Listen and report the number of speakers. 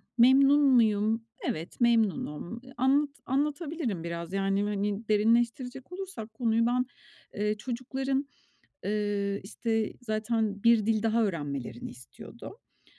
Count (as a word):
one